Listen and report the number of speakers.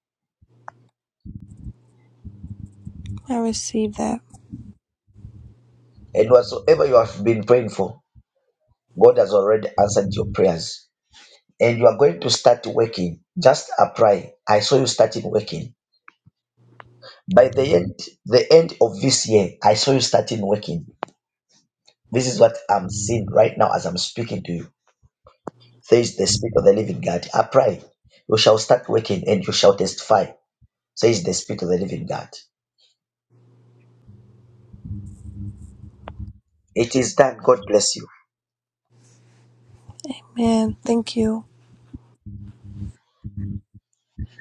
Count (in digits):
2